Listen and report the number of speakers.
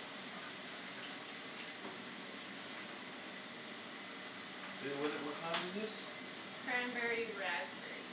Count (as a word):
two